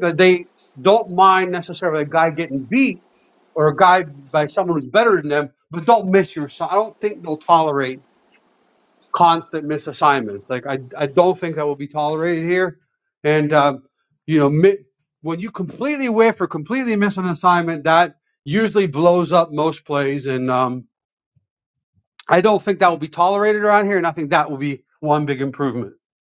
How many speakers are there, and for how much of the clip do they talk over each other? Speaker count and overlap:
1, no overlap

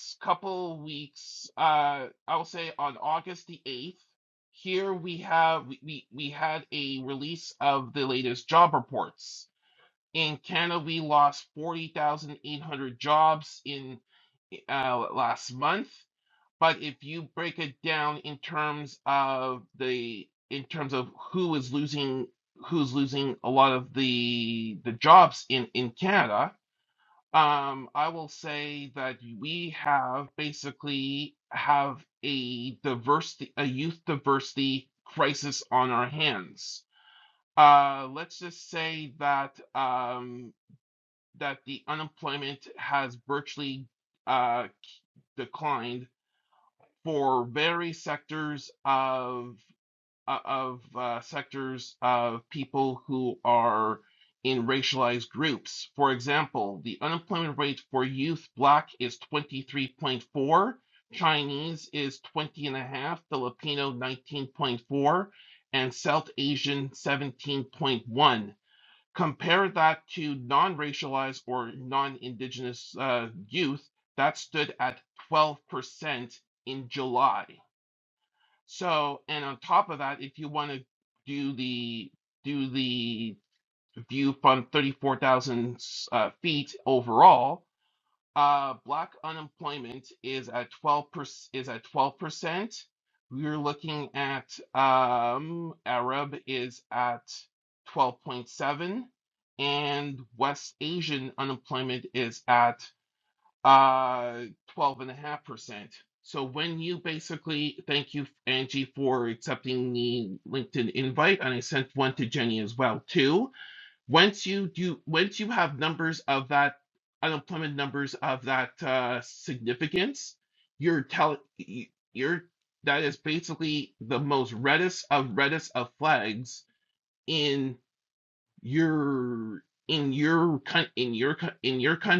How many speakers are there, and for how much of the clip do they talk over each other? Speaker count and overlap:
1, no overlap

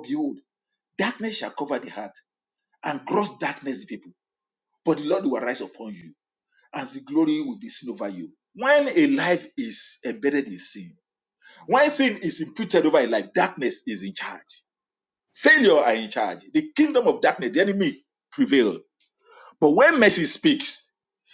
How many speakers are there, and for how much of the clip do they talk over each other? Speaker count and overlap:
1, no overlap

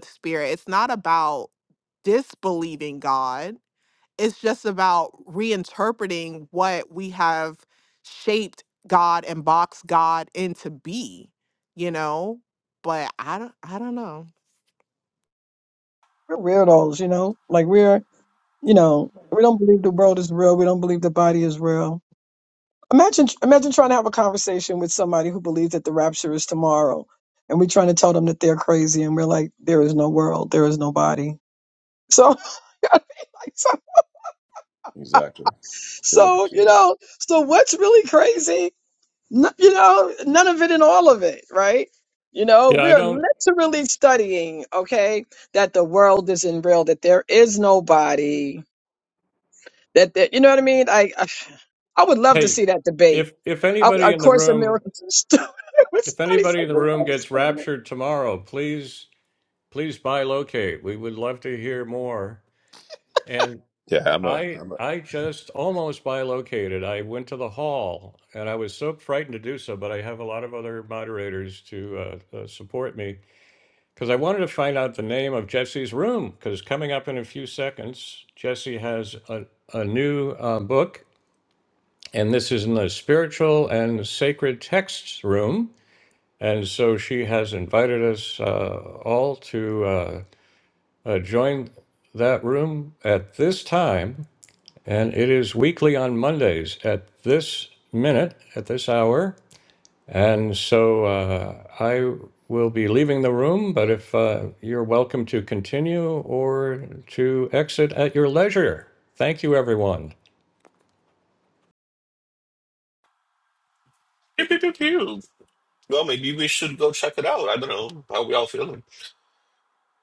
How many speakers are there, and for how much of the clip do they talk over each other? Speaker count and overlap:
5, about 4%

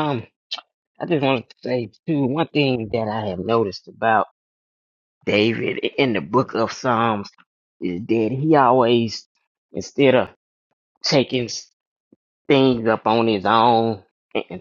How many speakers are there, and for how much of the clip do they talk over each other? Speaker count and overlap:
1, no overlap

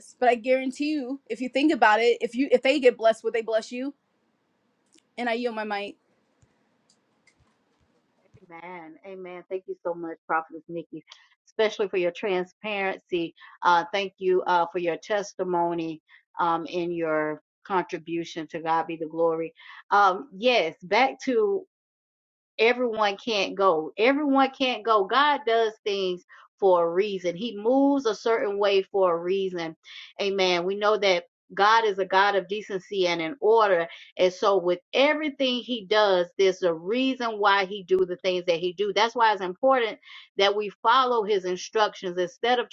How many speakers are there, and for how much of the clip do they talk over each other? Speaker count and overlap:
2, no overlap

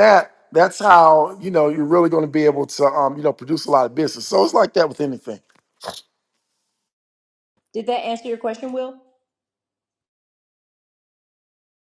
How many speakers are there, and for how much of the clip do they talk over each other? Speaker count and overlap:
2, no overlap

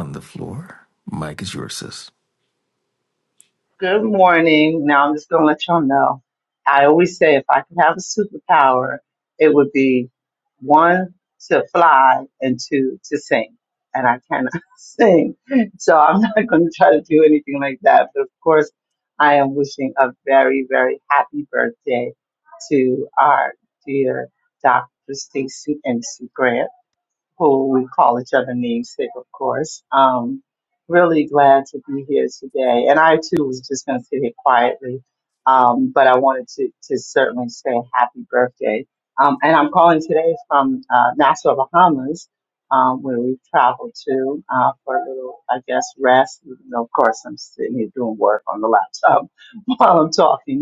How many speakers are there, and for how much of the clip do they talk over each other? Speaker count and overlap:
2, no overlap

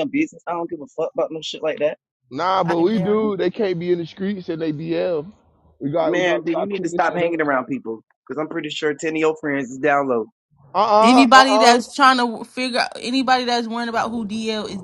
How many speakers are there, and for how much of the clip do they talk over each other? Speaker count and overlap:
3, about 18%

